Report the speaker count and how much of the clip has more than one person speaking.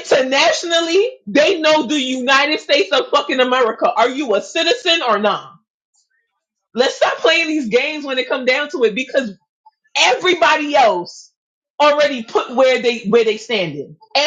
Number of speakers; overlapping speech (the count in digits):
1, no overlap